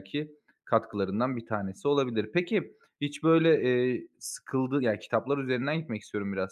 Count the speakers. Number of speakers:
1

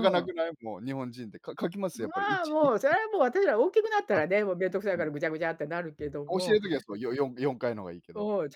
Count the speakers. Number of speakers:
2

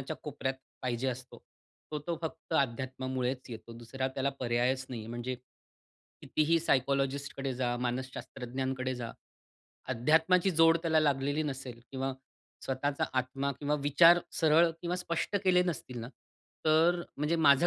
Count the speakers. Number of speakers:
1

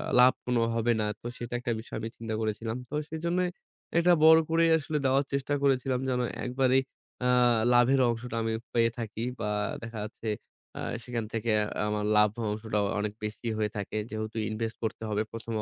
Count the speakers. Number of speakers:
1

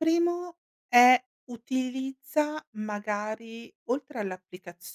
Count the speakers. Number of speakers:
1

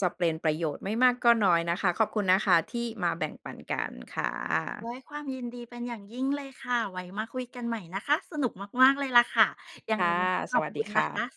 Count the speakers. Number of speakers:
2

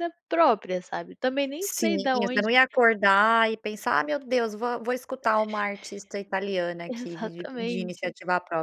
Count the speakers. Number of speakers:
2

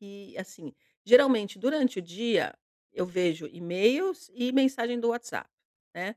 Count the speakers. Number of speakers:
1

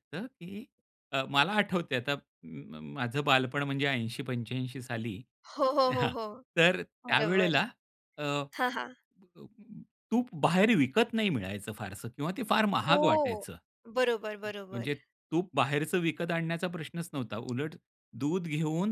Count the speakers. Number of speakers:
2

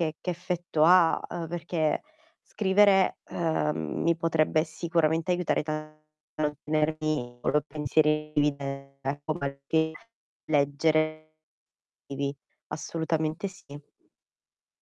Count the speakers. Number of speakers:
1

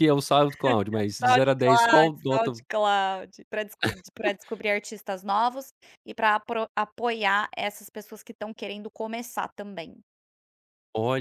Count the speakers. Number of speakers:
2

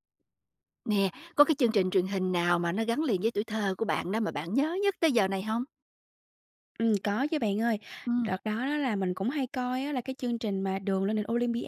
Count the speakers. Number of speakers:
2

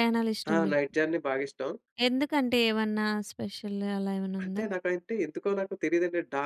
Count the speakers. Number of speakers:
2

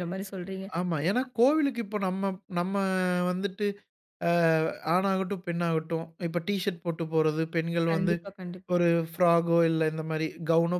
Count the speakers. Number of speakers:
2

